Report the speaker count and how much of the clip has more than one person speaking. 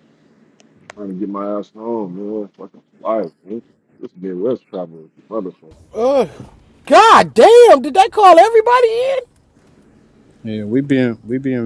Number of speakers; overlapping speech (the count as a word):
three, no overlap